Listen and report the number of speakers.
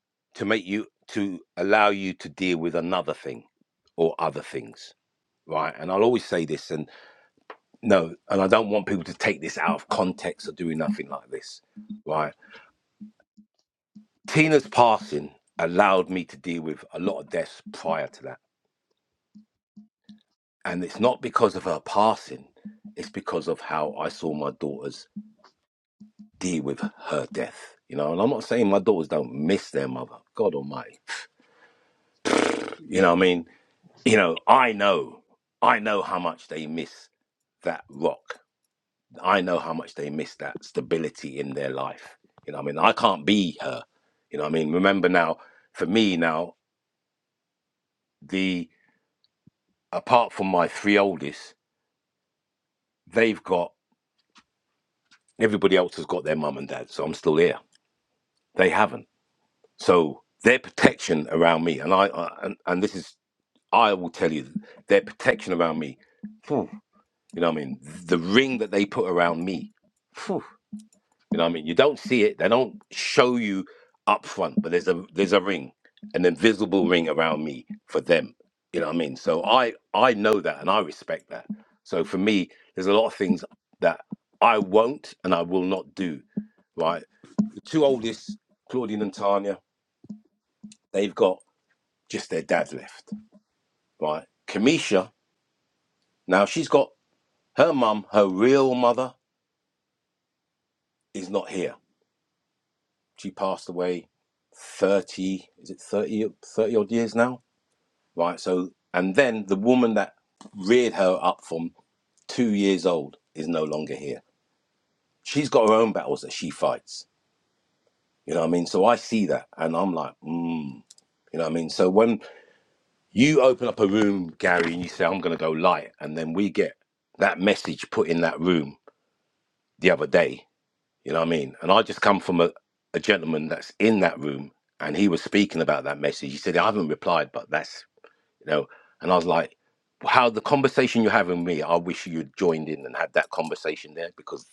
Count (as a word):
one